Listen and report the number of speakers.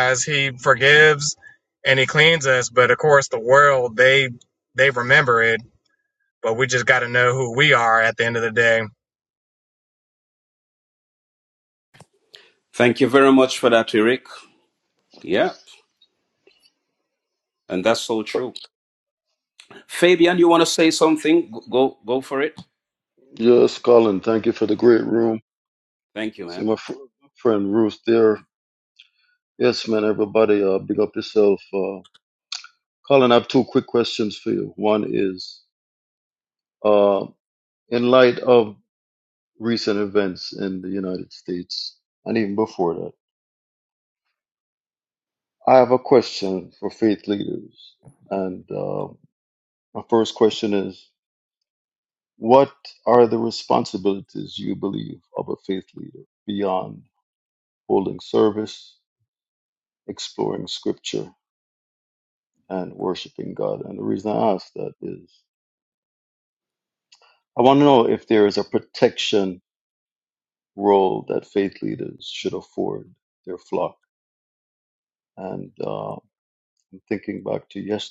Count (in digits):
3